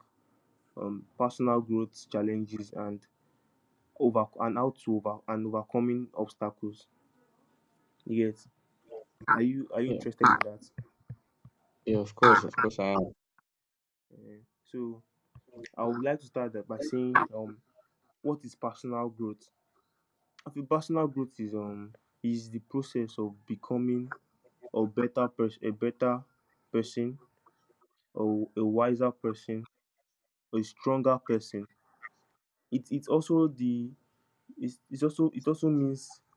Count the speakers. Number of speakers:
2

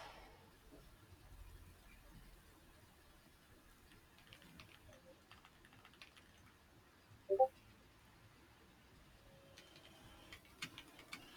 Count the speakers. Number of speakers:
0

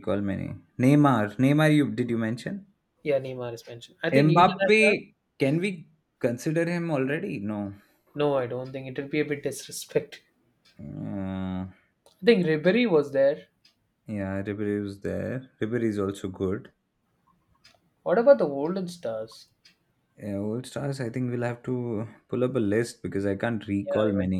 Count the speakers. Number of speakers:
2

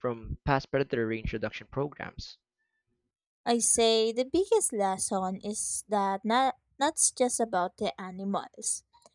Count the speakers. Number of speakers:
2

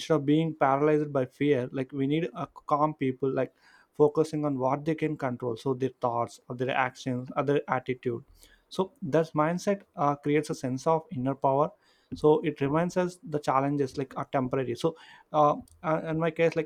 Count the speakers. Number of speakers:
1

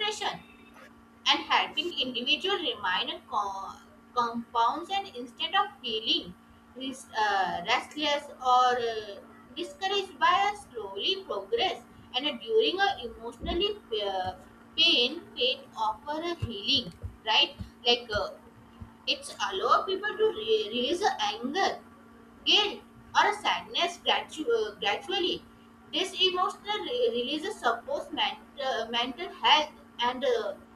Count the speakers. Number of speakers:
1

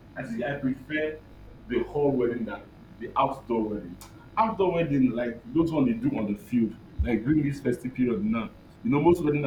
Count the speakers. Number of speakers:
1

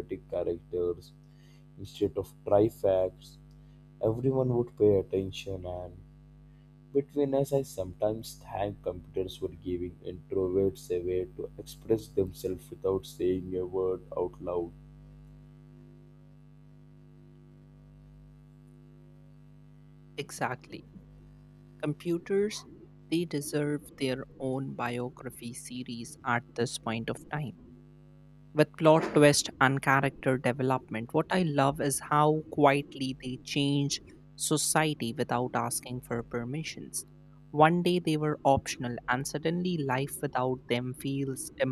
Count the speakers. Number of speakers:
2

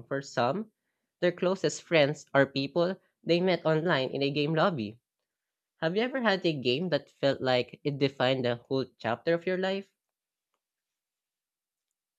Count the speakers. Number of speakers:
1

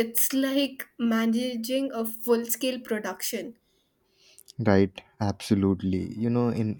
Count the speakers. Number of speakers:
2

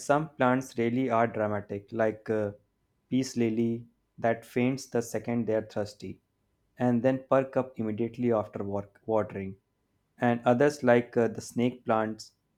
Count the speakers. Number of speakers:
1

